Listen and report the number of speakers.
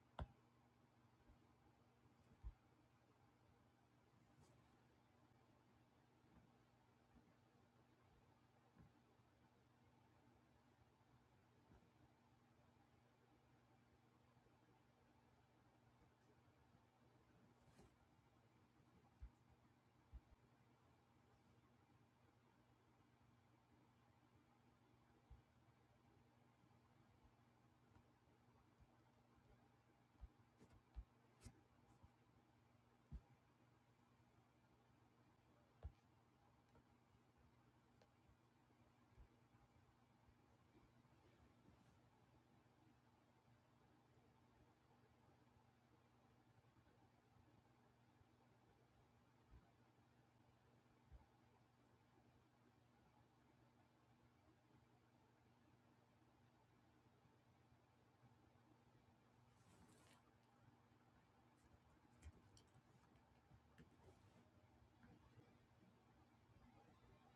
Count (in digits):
0